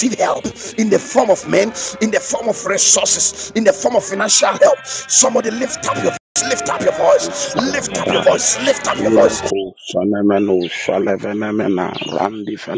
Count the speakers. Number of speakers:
2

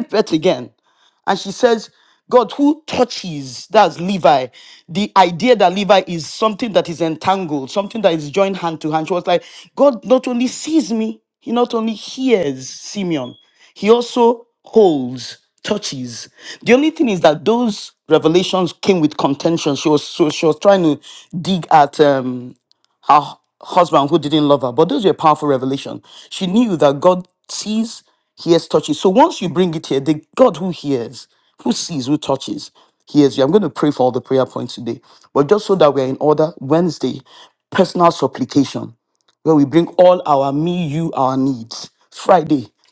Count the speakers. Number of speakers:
1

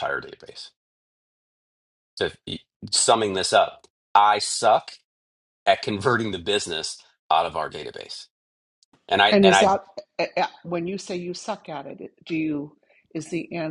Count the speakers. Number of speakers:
2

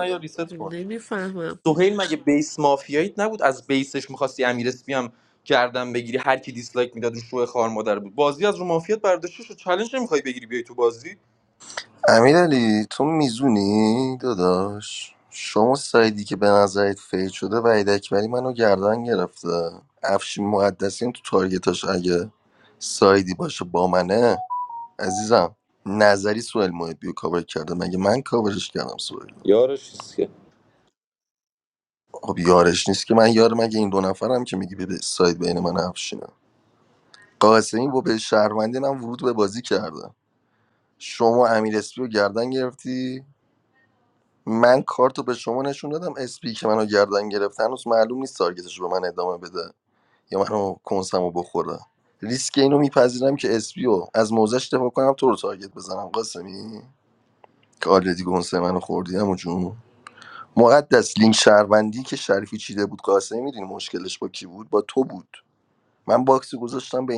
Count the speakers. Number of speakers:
3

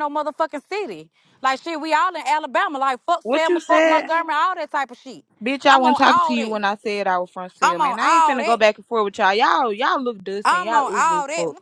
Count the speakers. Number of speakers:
2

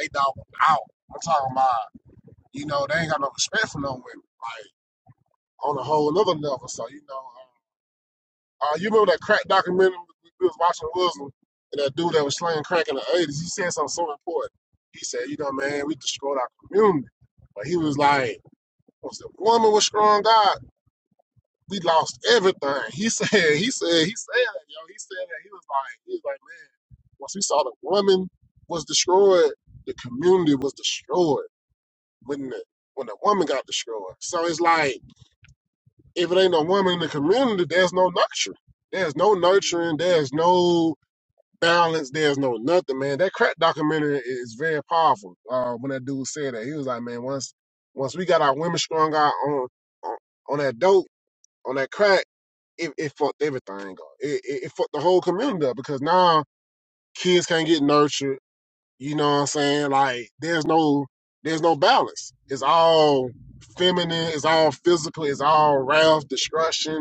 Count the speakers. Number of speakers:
1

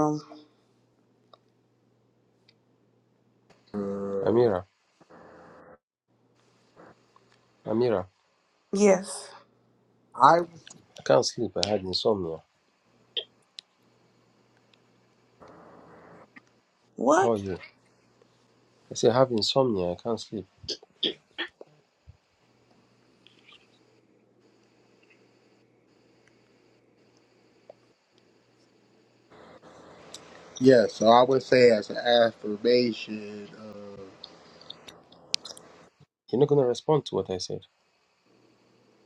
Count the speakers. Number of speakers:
3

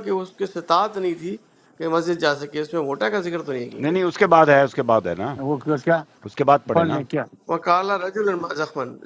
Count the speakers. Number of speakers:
3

